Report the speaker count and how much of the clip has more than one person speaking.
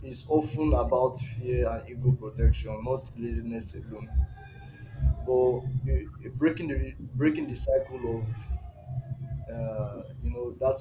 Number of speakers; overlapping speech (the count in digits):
1, no overlap